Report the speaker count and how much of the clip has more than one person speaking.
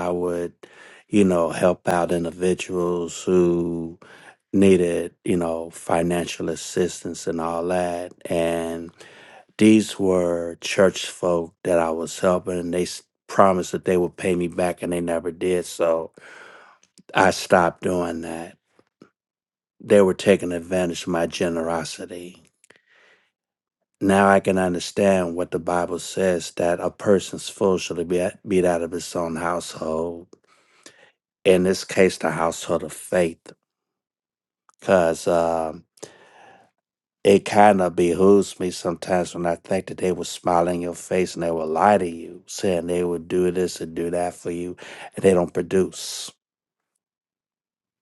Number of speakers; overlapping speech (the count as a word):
one, no overlap